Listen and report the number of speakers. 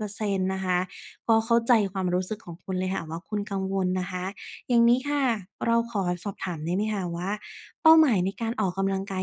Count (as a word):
one